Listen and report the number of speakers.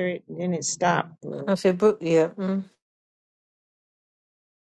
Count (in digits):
2